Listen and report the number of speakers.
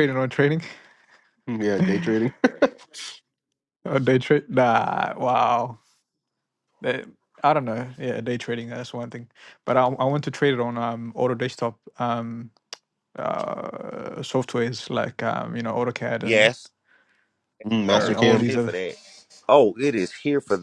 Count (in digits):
3